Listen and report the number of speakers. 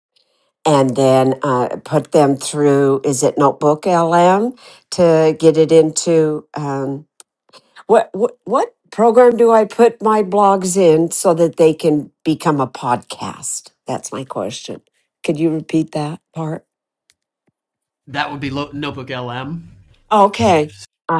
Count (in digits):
2